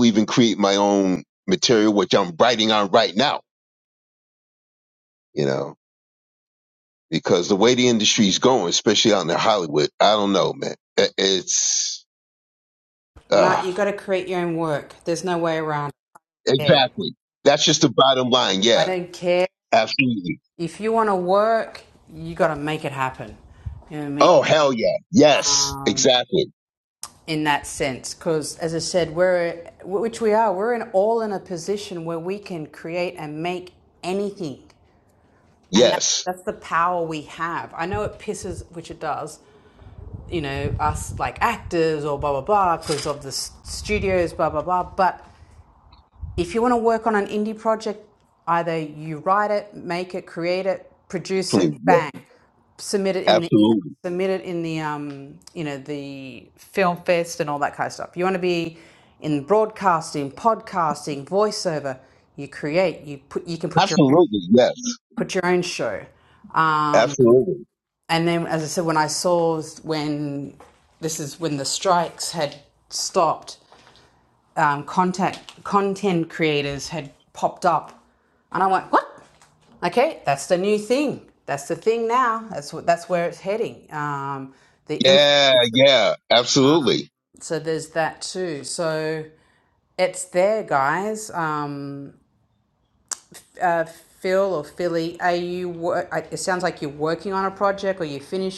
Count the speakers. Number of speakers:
two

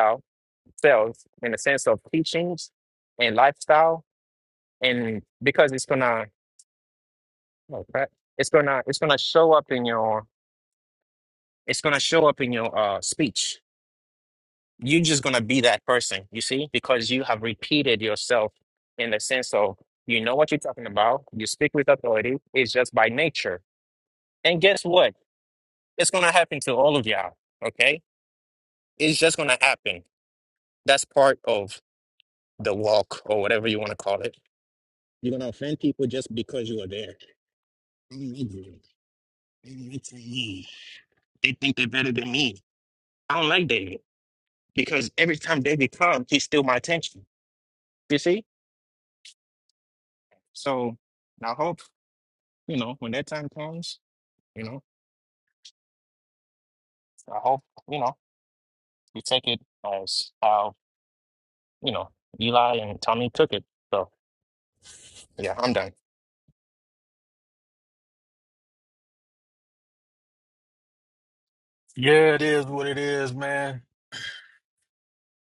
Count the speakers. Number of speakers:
two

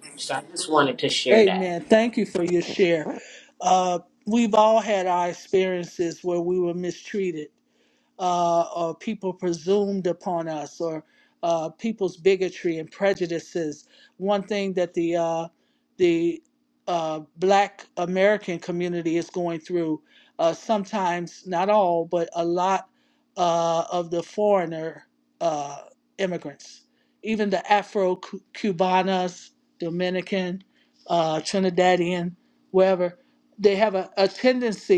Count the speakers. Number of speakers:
two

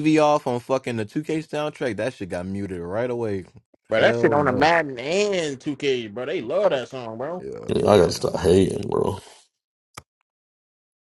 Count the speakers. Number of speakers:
three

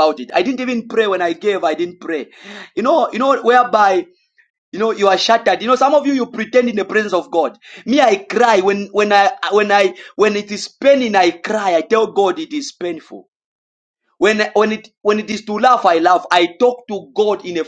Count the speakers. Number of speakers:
one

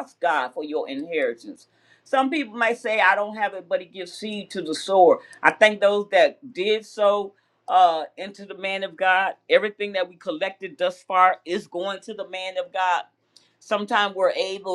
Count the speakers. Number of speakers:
one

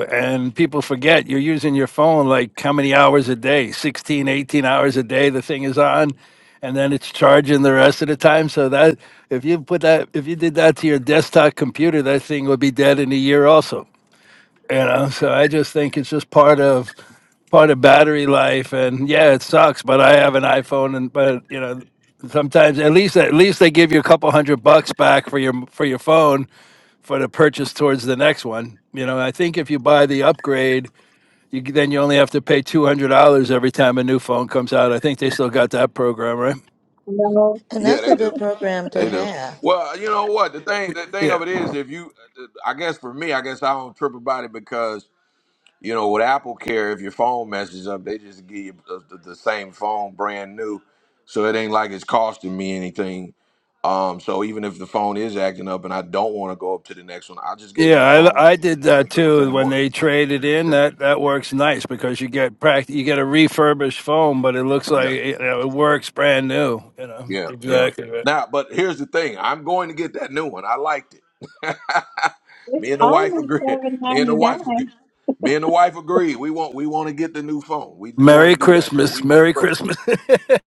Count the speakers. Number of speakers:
four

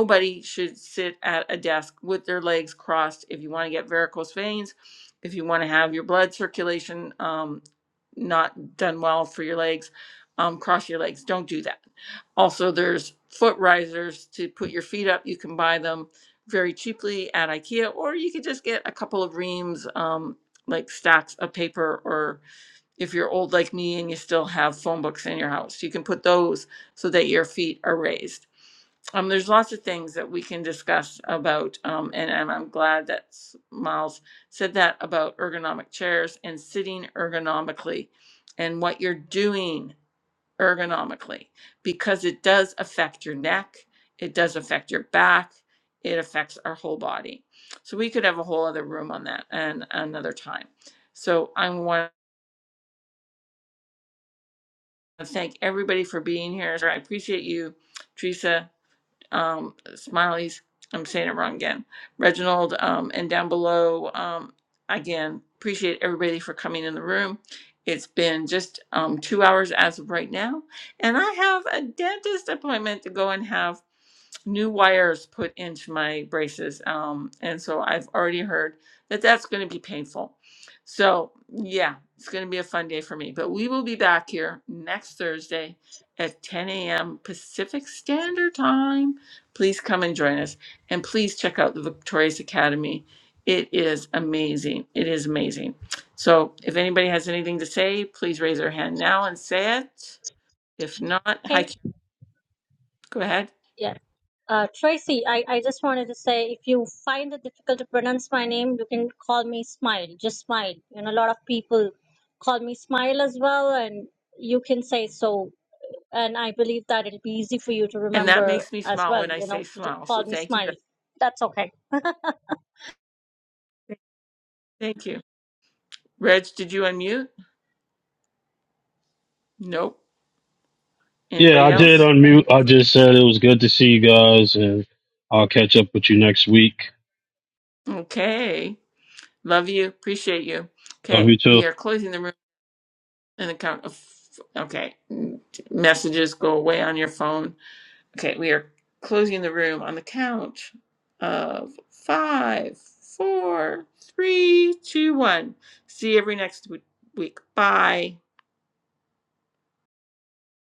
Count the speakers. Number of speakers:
three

